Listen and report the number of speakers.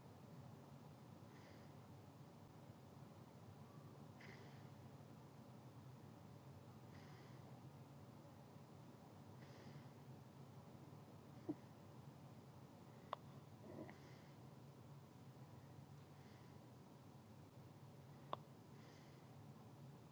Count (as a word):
zero